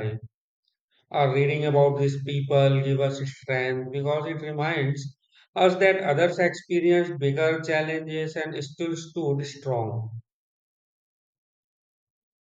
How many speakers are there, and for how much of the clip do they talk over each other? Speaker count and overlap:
one, no overlap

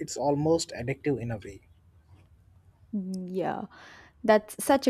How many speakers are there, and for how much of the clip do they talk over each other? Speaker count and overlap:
two, no overlap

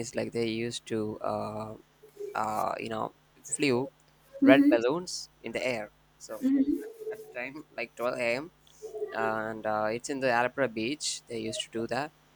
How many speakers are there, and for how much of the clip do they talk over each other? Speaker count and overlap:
two, about 3%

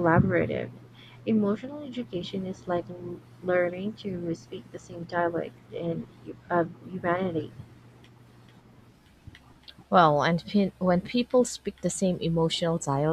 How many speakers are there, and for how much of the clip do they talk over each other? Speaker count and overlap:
two, no overlap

